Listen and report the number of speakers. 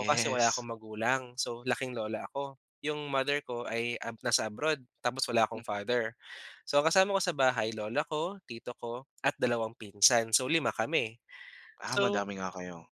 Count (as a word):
two